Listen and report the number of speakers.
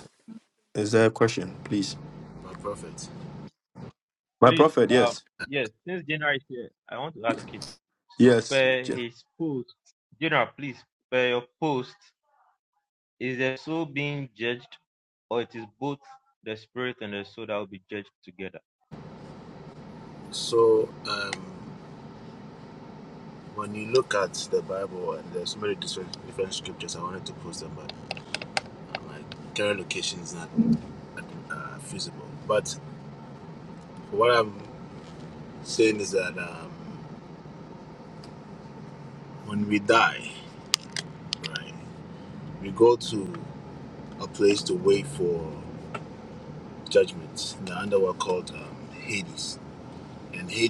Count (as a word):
three